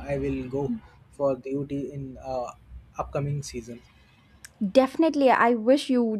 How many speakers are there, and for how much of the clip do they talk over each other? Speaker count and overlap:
two, no overlap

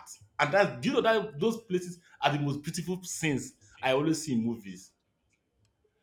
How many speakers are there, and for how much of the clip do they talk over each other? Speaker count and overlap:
one, no overlap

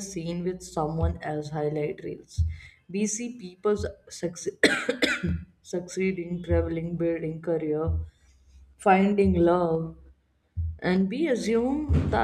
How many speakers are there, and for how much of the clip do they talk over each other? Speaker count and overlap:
one, no overlap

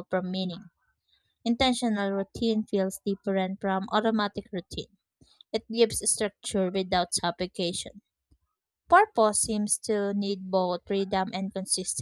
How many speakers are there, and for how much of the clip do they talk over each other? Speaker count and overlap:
one, no overlap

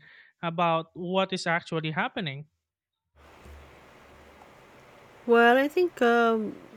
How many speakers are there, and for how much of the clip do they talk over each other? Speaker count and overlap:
two, no overlap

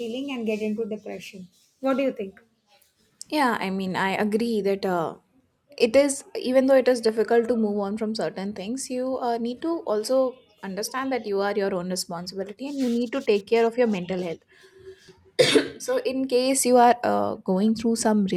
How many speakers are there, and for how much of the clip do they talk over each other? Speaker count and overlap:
two, no overlap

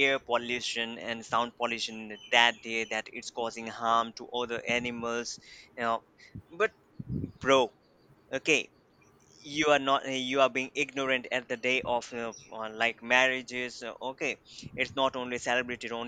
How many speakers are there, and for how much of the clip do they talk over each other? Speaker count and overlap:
one, no overlap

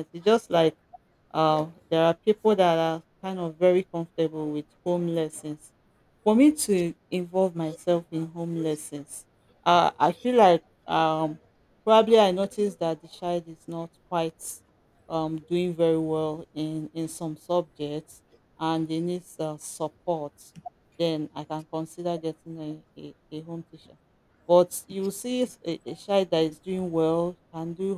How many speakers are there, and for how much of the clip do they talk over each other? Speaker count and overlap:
one, no overlap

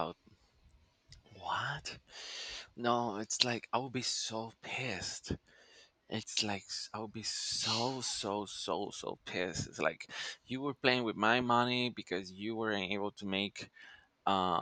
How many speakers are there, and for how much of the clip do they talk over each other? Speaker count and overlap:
one, no overlap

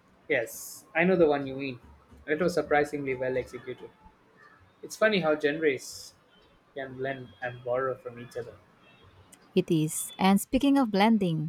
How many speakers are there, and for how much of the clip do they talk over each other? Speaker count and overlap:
two, no overlap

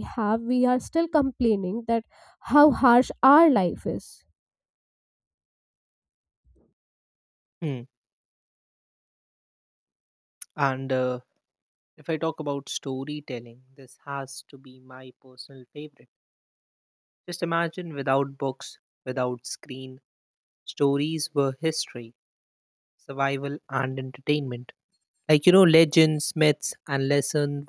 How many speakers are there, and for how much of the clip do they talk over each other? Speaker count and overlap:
two, no overlap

